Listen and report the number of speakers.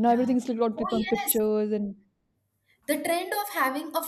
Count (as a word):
two